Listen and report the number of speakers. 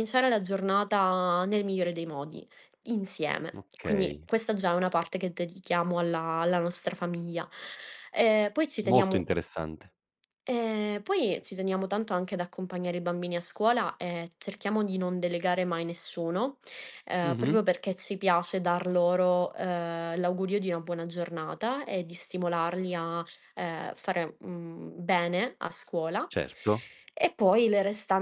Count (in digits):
2